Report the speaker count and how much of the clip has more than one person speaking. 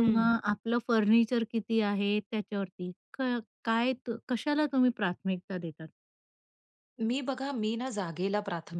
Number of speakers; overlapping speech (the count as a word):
two, about 4%